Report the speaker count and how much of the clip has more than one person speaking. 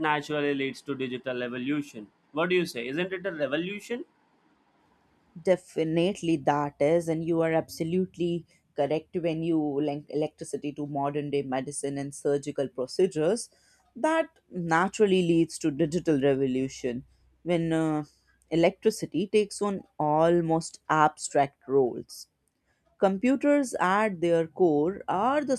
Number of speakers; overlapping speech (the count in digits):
2, no overlap